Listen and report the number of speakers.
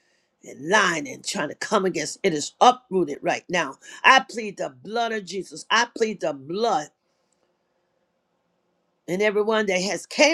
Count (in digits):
1